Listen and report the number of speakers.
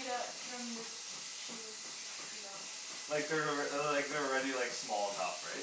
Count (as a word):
two